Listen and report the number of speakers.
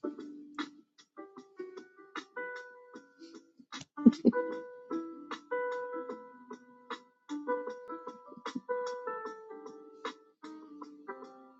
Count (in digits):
0